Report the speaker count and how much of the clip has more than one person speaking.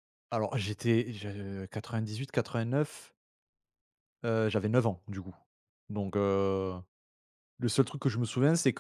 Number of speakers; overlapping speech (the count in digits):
1, no overlap